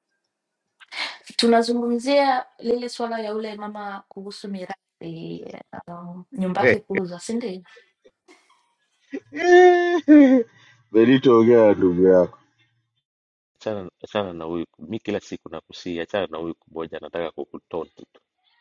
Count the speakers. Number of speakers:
three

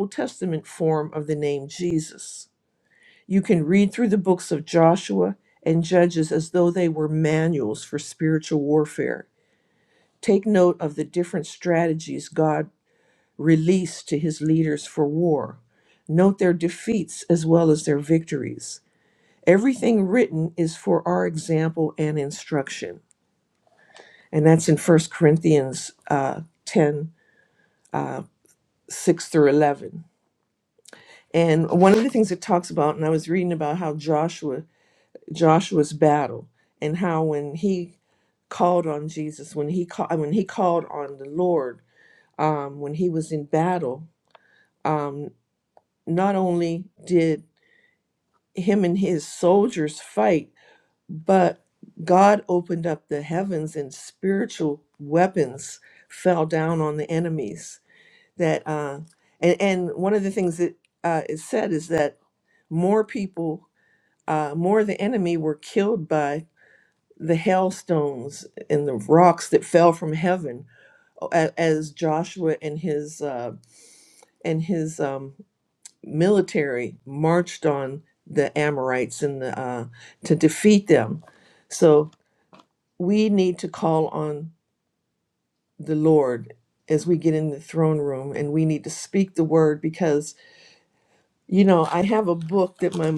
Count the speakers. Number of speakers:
one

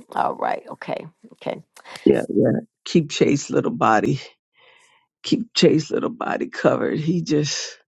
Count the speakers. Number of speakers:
two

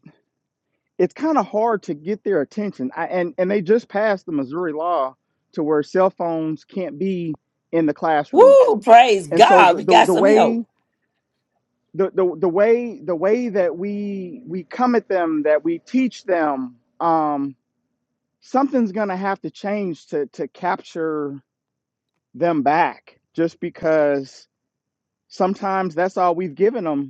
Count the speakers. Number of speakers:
two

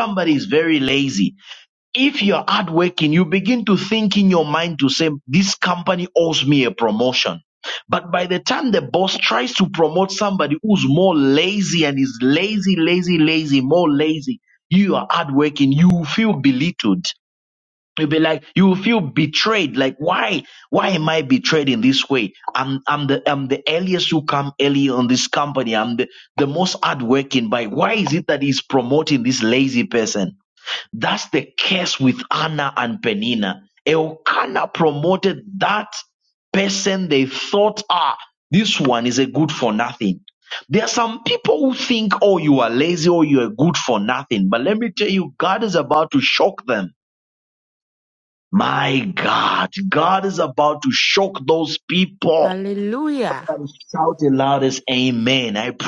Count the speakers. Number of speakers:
two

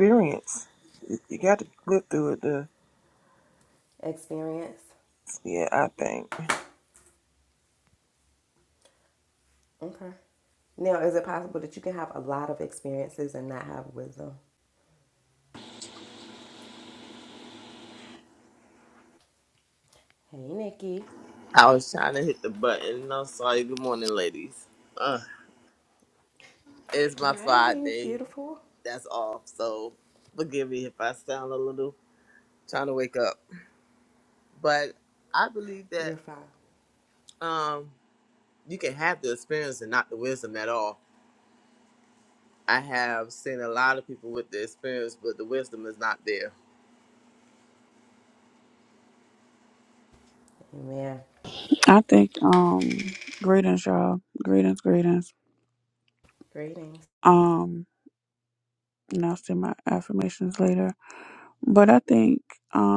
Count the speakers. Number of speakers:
four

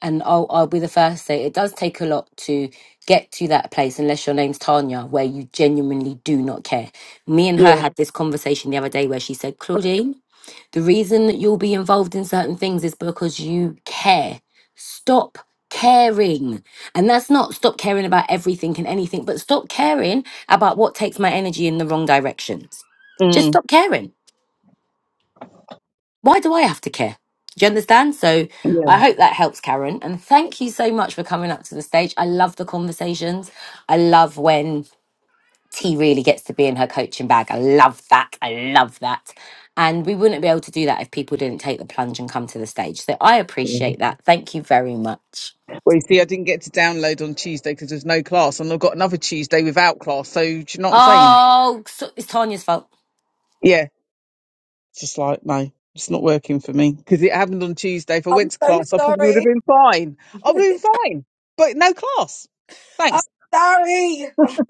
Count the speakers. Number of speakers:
three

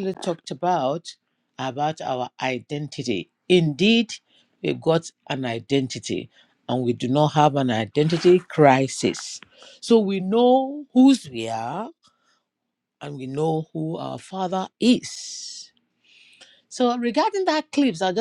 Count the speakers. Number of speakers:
one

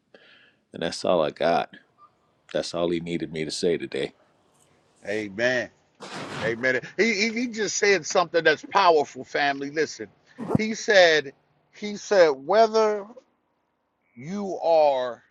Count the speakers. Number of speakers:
two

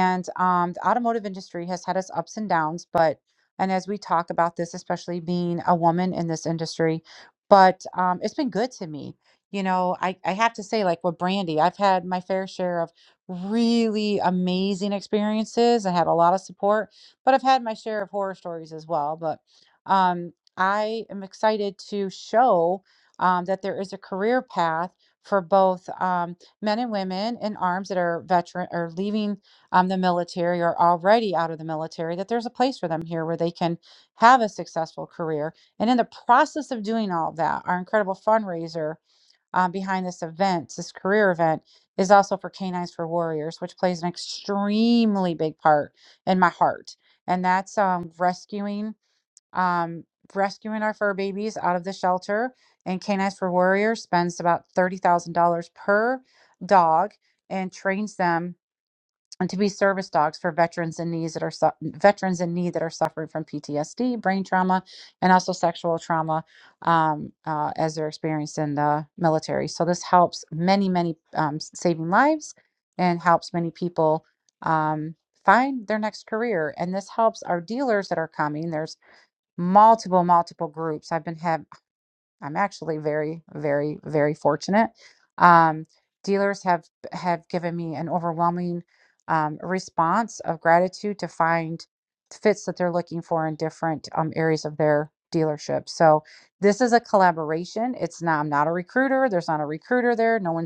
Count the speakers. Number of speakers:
one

